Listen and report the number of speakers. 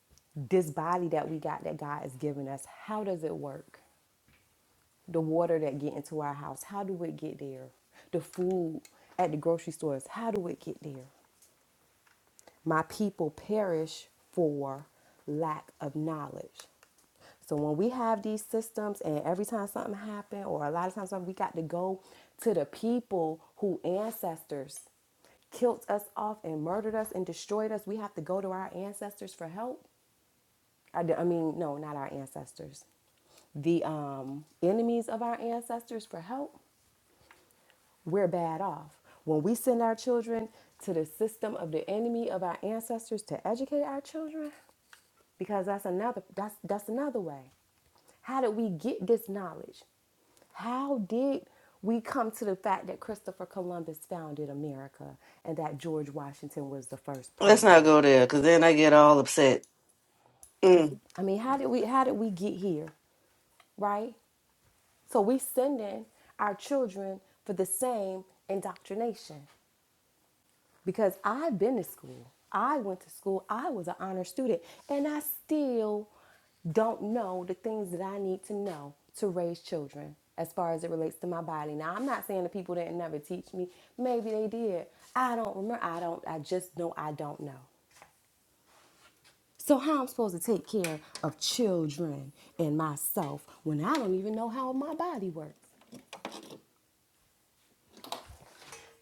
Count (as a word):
two